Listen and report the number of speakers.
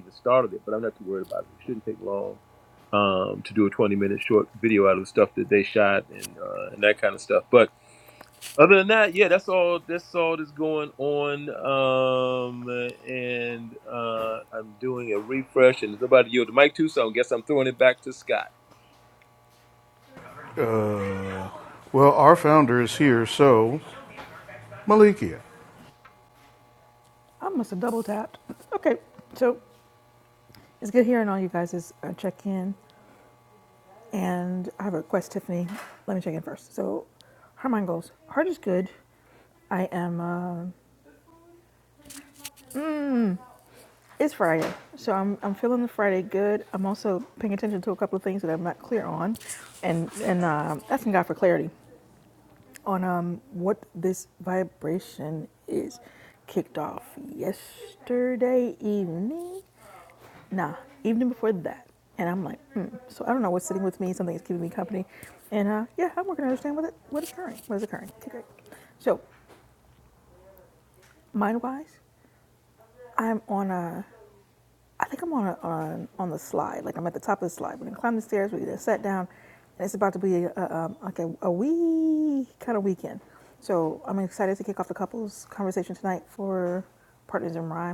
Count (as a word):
three